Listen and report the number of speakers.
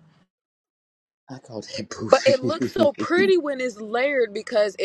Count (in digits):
2